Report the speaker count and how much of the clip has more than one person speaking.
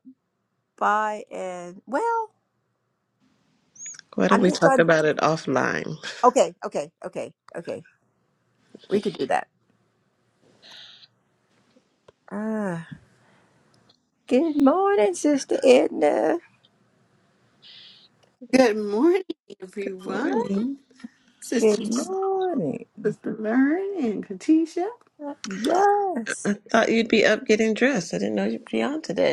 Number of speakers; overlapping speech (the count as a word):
three, about 5%